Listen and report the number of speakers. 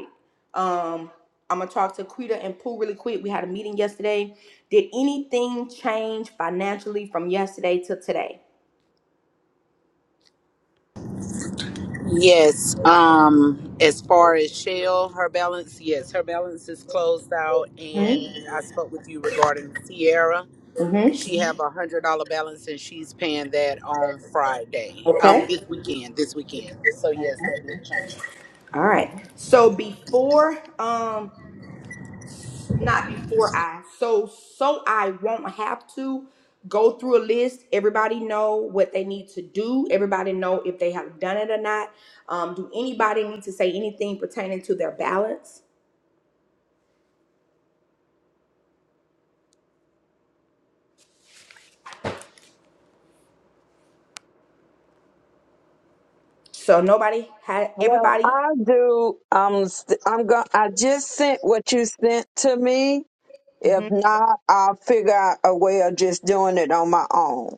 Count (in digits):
3